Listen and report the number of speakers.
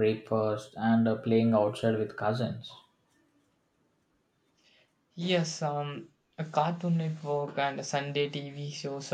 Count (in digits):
2